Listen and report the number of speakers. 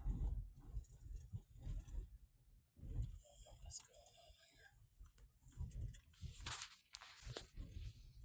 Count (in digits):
0